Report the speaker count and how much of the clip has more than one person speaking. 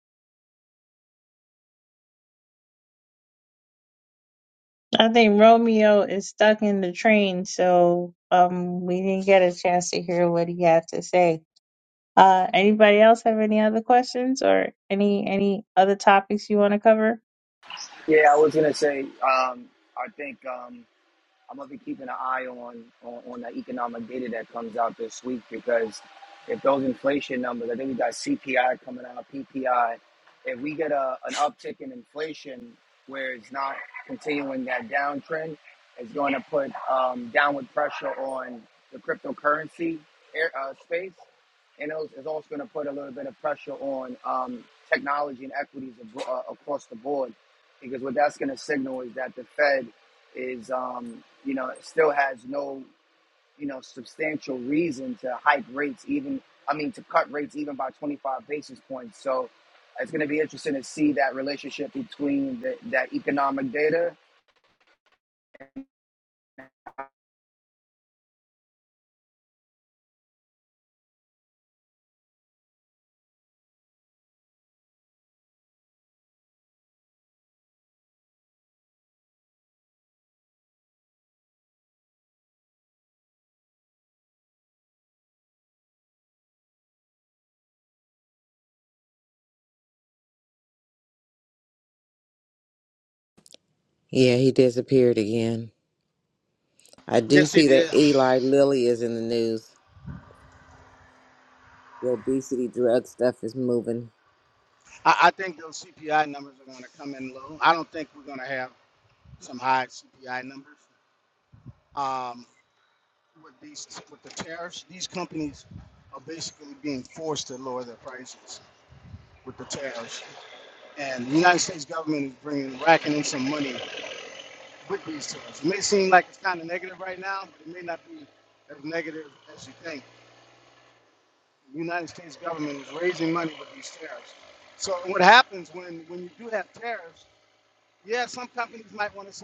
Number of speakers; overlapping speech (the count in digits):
4, about 1%